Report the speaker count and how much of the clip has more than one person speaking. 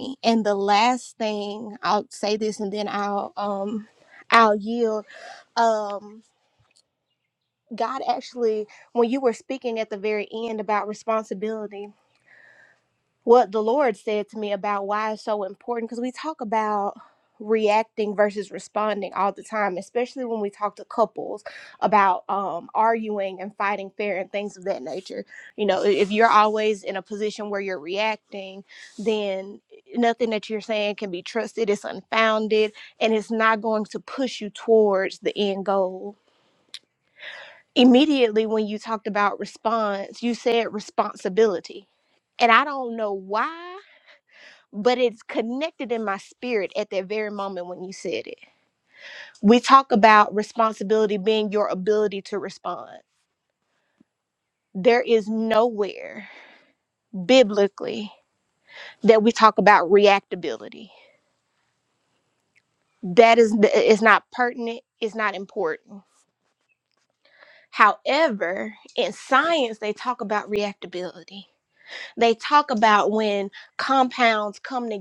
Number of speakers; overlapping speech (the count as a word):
one, no overlap